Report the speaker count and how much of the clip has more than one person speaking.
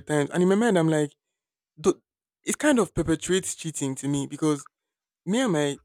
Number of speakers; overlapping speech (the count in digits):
1, no overlap